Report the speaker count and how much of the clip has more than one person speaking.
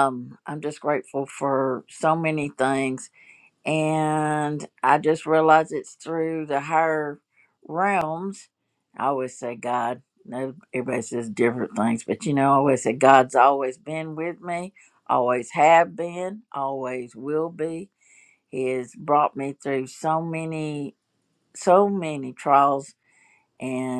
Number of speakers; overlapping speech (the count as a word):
one, no overlap